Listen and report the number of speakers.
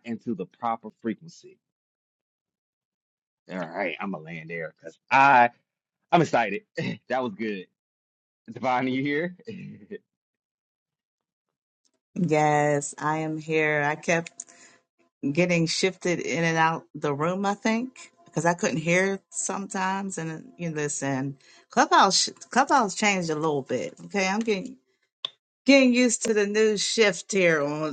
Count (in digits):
2